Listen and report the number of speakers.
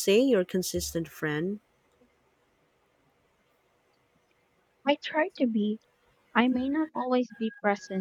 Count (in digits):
2